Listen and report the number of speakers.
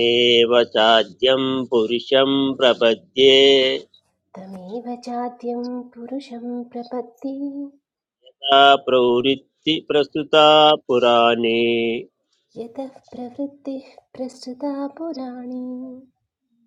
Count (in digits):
2